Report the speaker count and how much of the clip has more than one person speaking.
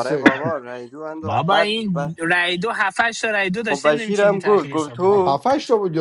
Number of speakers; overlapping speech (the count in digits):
3, about 47%